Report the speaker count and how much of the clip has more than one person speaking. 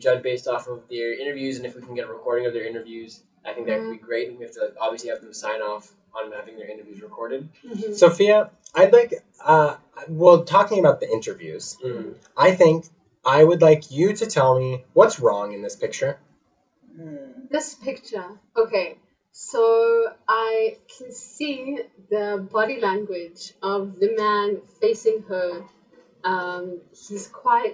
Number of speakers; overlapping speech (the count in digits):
3, about 1%